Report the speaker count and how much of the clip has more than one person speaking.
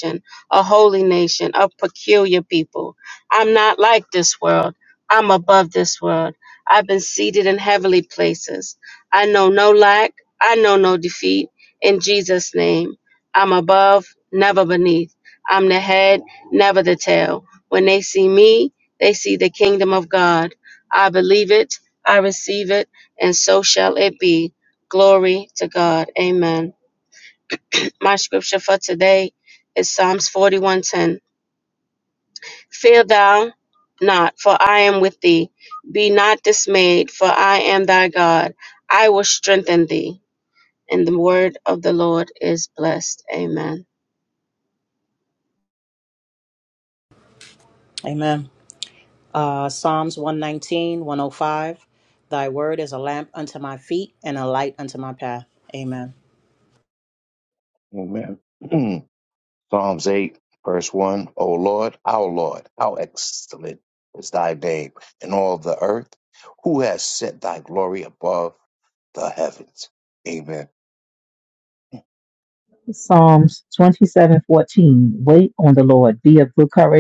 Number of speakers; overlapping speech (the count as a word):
four, no overlap